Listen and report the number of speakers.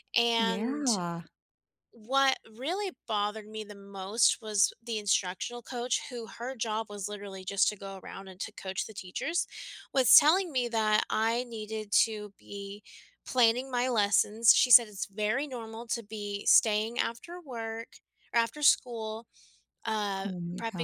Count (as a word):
two